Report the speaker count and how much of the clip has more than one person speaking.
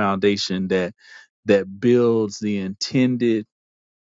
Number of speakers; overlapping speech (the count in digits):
1, no overlap